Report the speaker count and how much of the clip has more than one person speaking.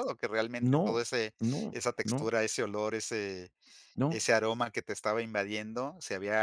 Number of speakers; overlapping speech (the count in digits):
2, about 10%